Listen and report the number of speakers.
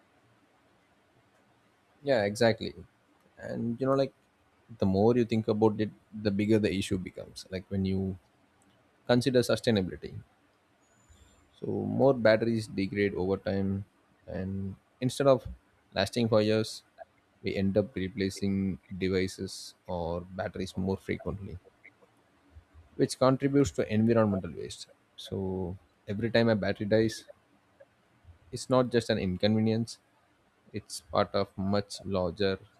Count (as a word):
one